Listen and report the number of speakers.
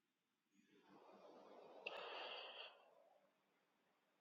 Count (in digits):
0